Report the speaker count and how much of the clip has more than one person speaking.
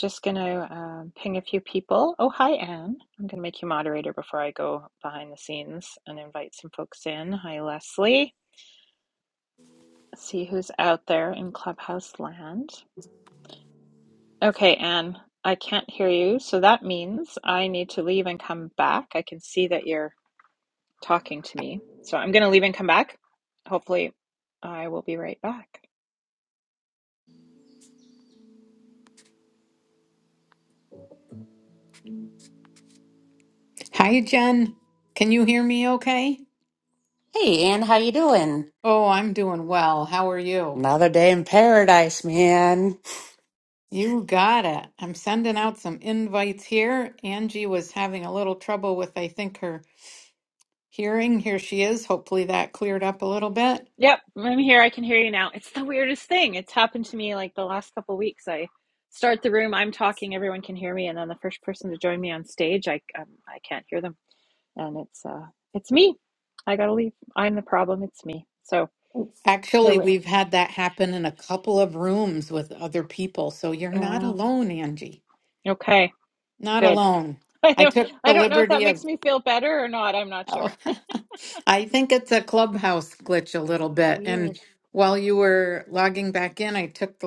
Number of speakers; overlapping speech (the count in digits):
3, about 3%